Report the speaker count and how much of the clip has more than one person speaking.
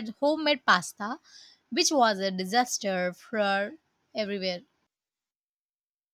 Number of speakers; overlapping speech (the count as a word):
one, no overlap